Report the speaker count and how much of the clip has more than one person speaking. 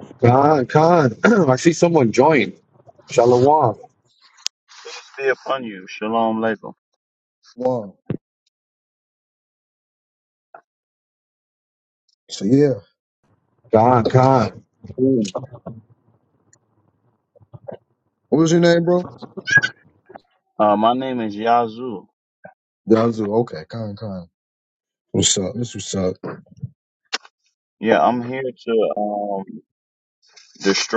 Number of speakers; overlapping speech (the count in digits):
3, no overlap